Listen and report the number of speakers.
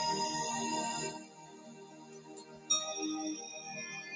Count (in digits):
0